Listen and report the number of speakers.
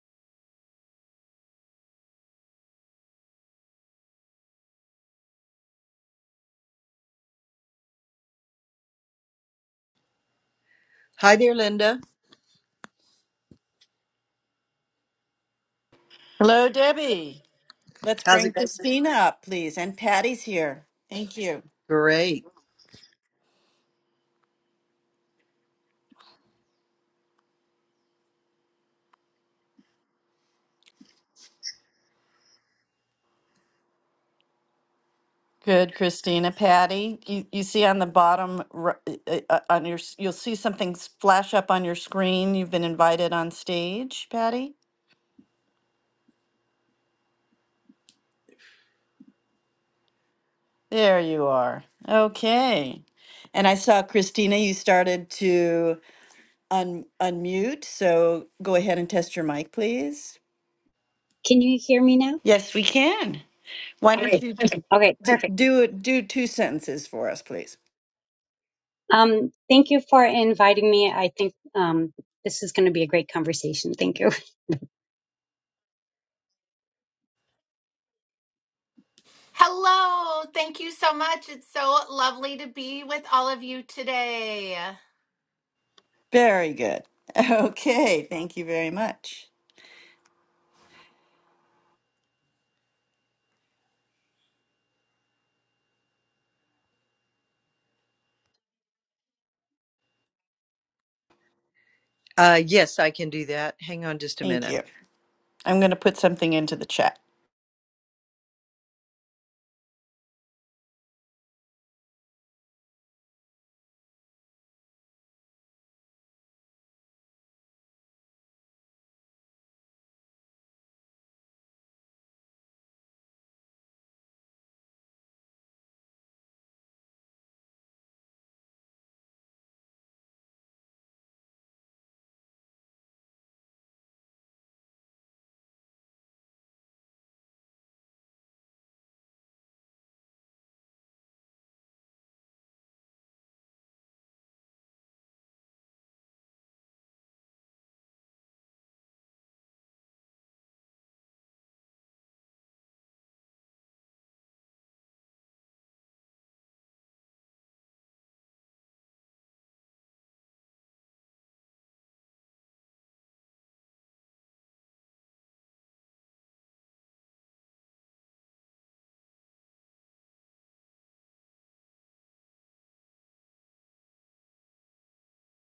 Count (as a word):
four